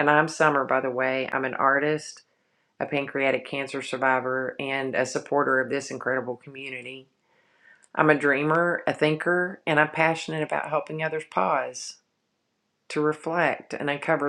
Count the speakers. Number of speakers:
one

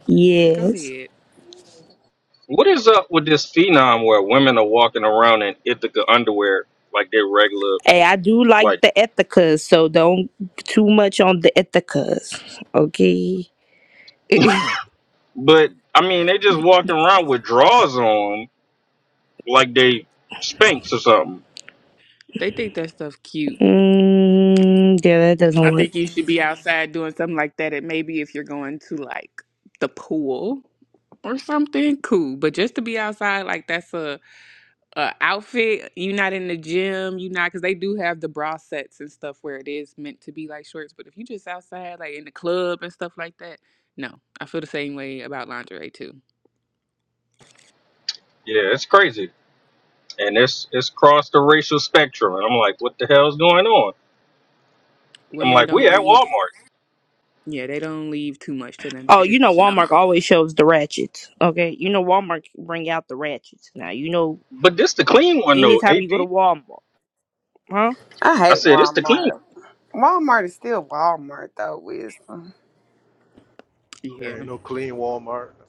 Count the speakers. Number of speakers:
five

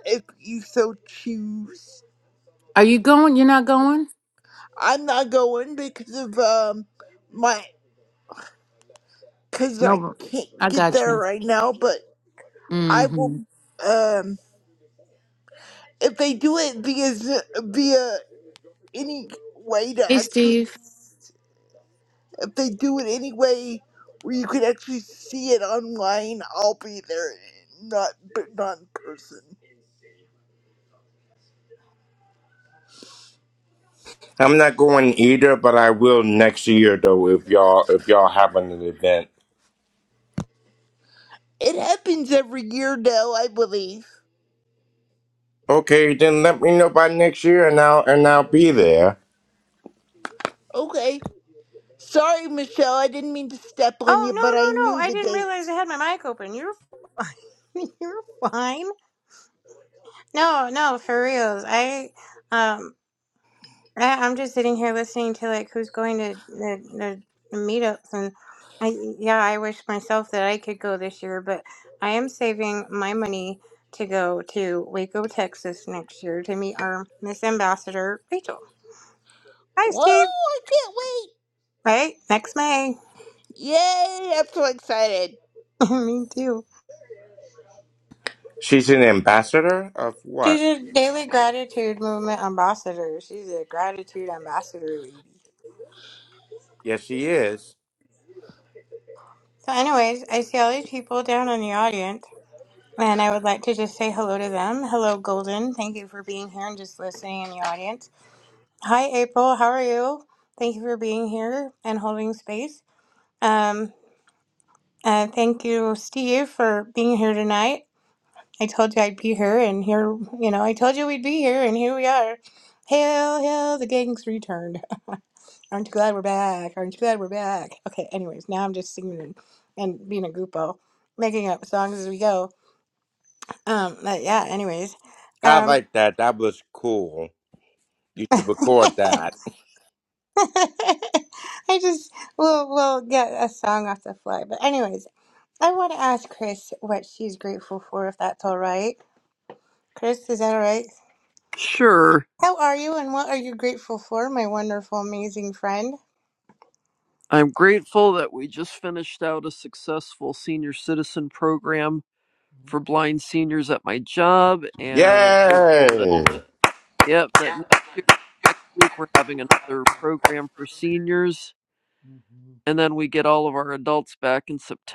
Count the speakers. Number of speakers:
five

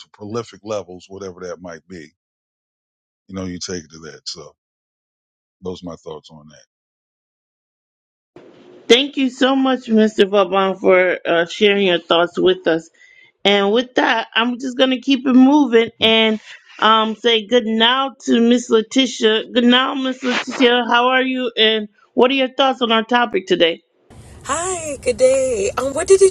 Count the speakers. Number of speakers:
three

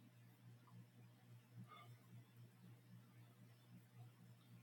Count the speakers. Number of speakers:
zero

